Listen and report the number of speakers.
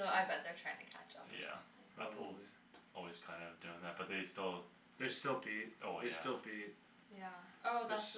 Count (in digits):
3